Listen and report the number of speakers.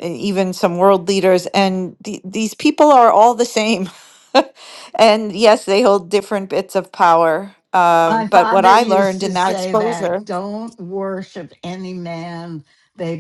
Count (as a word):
two